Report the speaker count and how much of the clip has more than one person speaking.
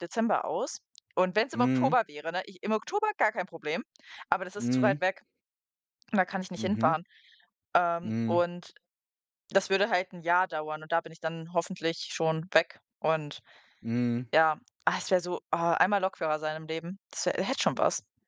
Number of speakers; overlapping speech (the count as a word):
two, about 8%